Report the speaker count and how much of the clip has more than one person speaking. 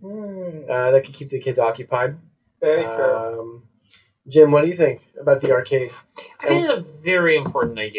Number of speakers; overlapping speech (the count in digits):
3, about 6%